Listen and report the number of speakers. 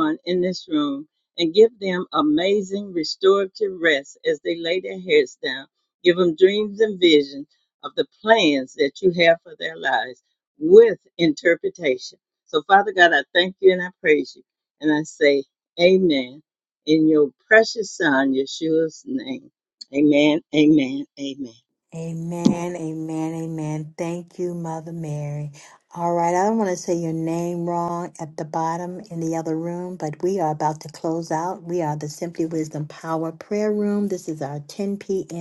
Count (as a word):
two